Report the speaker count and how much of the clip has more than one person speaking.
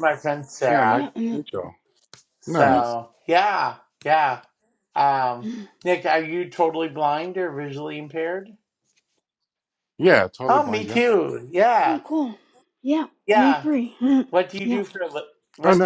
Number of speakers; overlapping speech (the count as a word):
three, about 16%